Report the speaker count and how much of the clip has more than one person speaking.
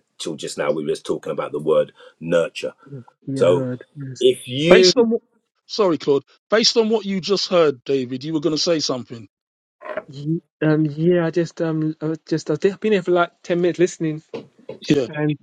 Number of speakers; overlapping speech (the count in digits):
3, about 3%